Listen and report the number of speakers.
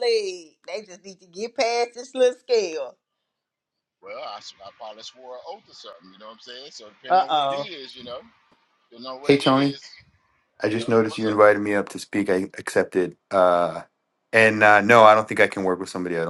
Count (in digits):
3